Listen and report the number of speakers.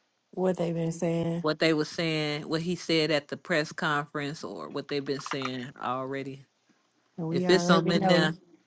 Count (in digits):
2